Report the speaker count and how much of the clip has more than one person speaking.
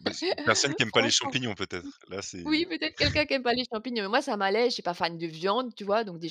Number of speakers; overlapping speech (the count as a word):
two, about 10%